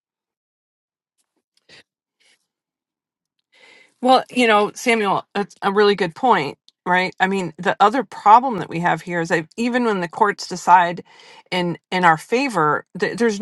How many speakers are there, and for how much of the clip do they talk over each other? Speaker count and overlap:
1, no overlap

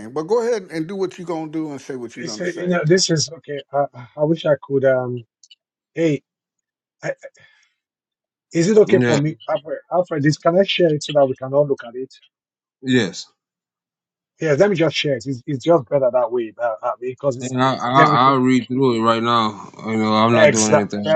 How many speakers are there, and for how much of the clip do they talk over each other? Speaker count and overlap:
3, about 10%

